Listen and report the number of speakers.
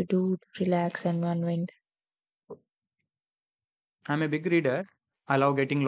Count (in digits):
2